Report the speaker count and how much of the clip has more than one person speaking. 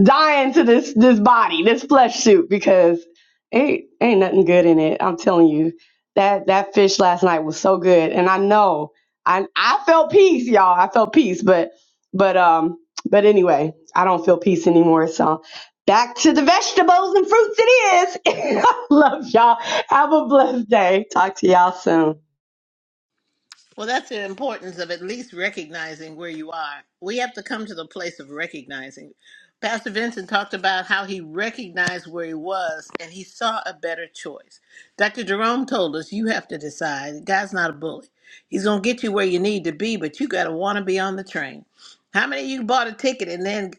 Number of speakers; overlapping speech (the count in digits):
2, no overlap